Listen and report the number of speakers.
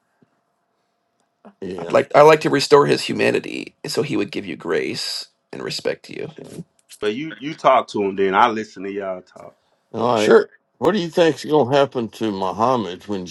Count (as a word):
three